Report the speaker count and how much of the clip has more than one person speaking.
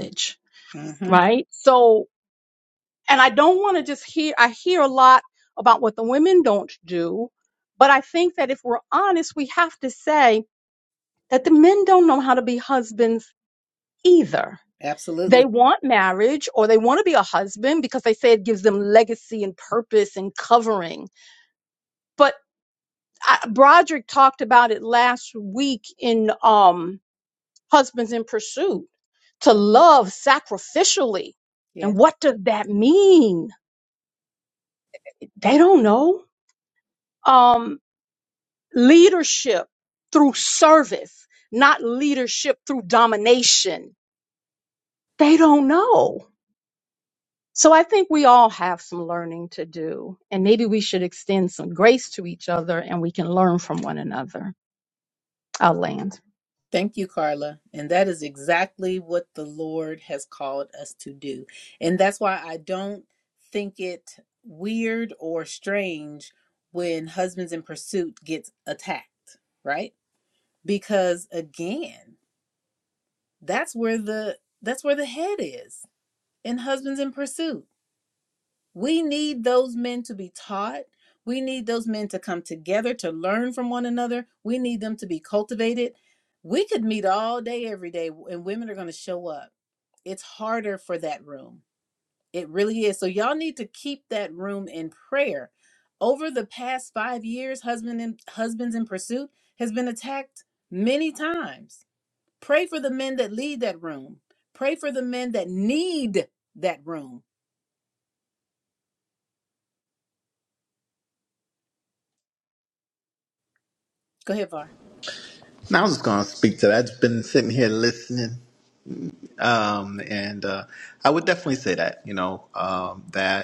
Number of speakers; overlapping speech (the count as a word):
three, under 1%